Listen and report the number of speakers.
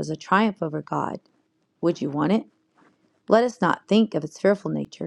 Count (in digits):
1